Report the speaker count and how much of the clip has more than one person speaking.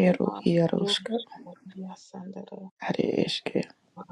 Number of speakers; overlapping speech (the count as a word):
two, about 26%